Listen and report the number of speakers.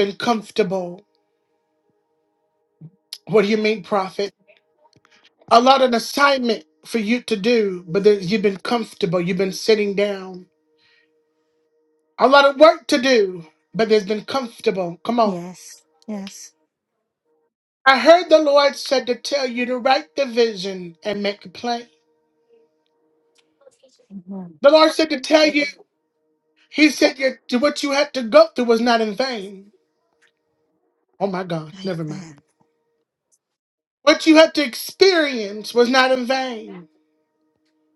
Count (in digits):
2